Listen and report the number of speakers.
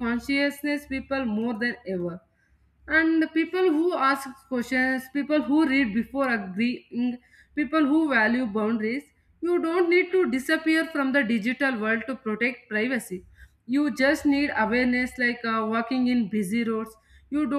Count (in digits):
1